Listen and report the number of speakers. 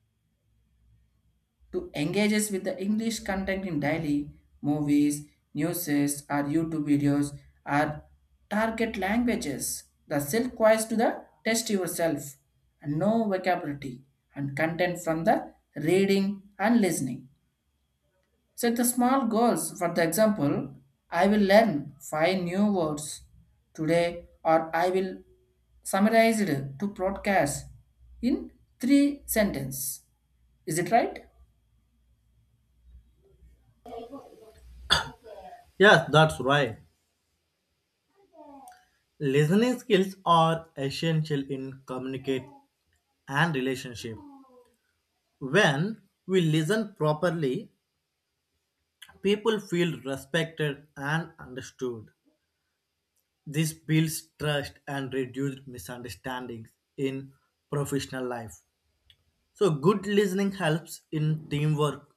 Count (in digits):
2